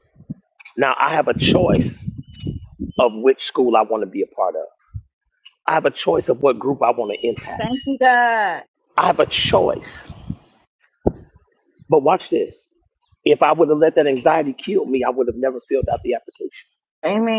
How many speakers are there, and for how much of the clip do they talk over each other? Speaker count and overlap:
2, about 1%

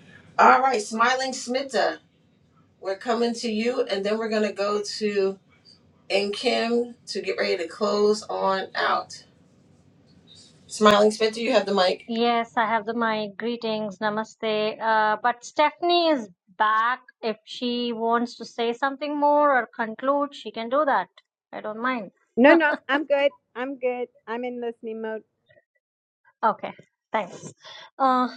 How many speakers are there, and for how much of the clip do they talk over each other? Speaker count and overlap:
3, no overlap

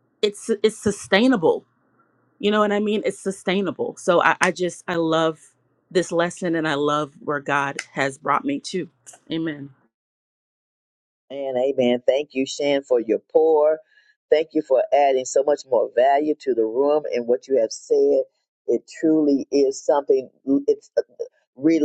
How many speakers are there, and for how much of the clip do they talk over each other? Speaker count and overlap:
2, no overlap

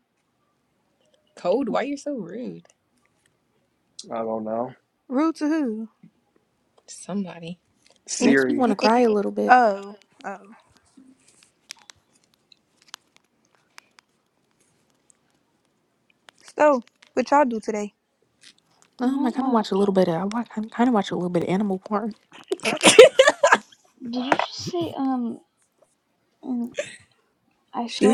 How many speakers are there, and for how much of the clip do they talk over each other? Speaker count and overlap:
5, about 6%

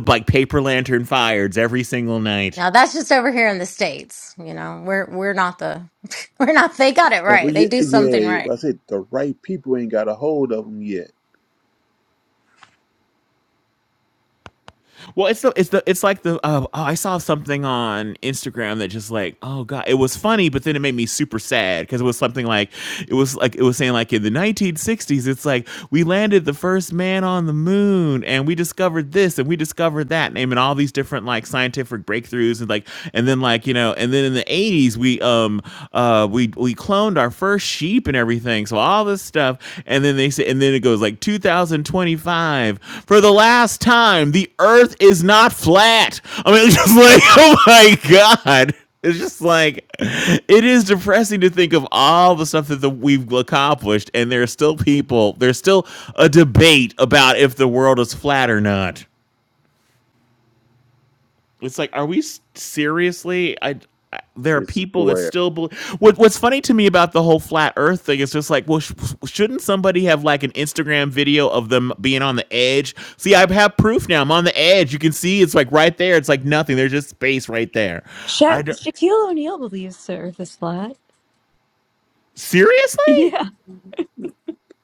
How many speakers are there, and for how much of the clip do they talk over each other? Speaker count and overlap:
4, about 3%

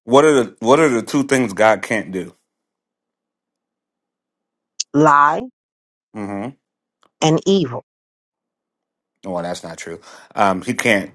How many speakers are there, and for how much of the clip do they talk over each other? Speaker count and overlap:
2, no overlap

